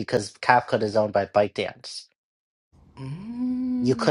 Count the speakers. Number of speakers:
2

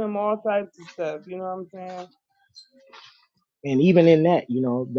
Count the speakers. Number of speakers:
2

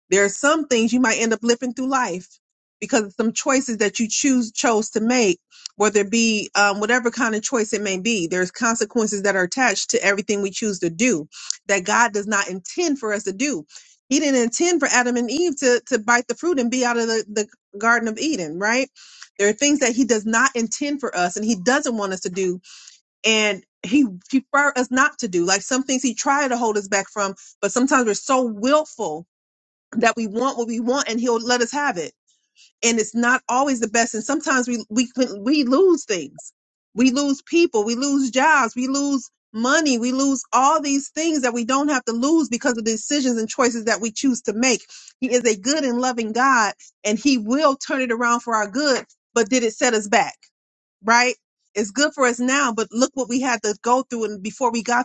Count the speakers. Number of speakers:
1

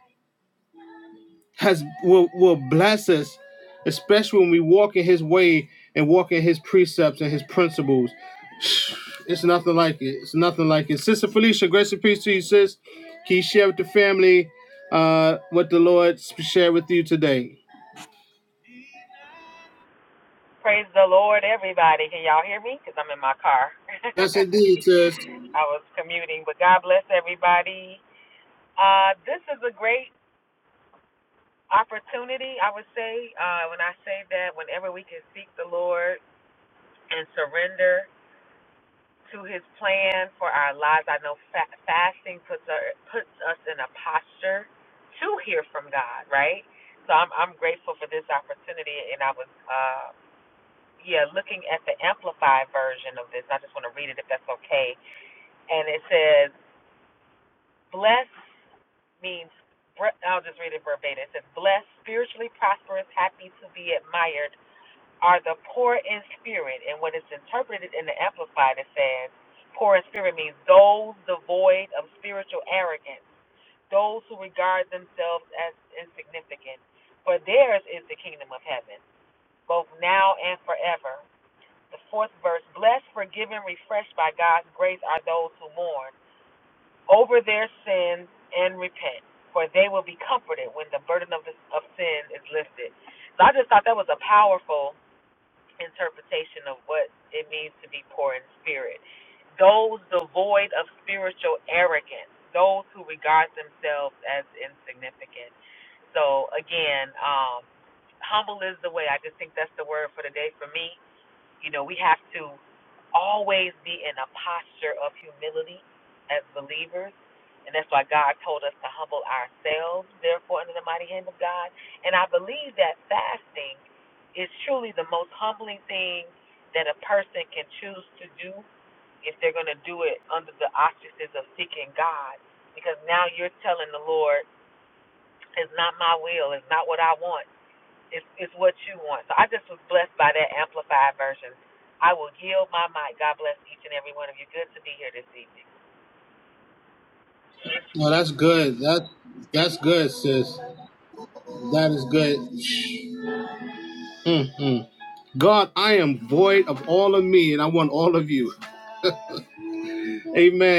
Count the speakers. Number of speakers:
2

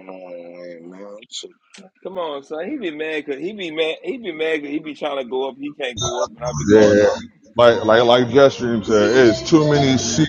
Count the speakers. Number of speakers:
3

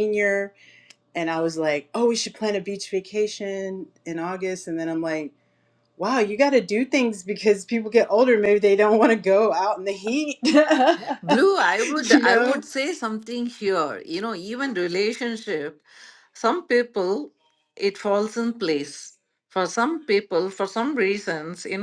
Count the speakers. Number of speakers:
2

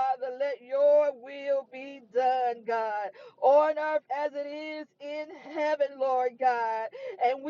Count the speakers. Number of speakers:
1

